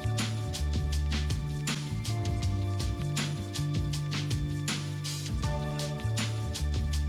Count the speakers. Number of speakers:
0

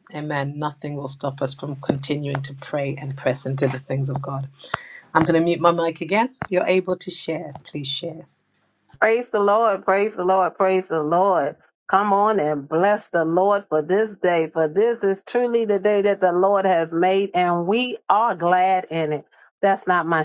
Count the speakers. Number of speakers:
2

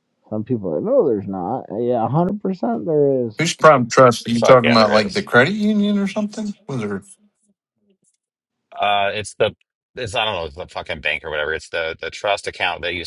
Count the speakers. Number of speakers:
3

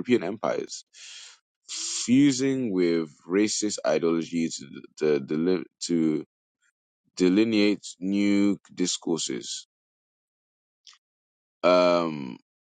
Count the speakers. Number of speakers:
1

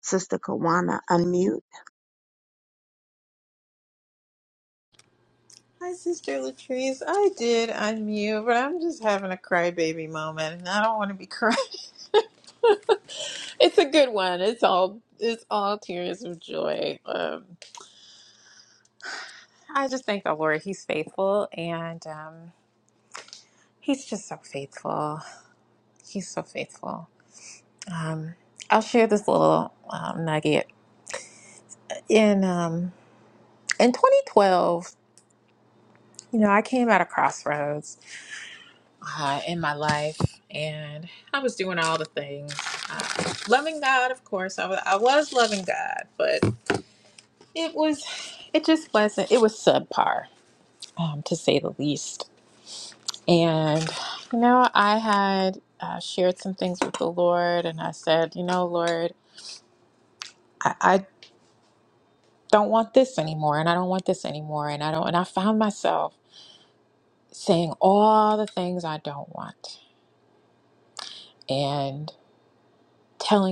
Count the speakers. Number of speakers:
2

